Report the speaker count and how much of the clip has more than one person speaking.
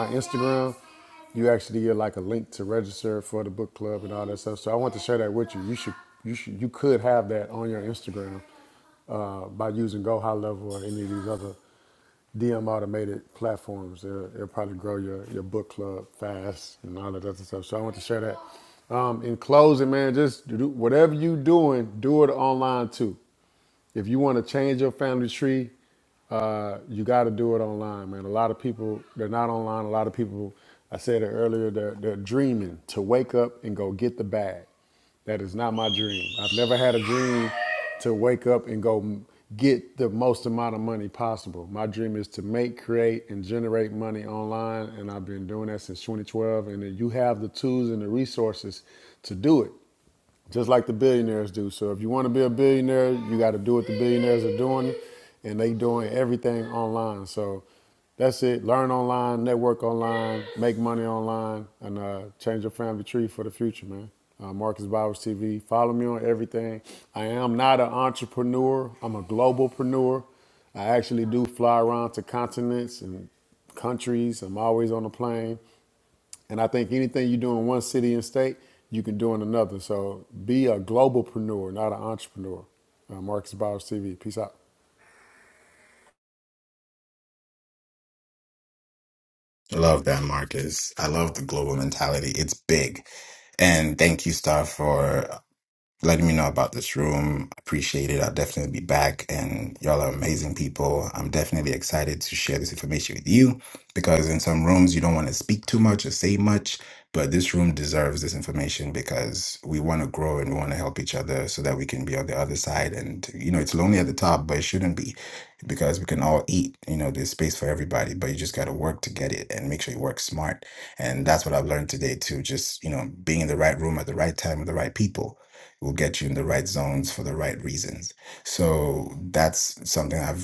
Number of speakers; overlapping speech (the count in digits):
2, no overlap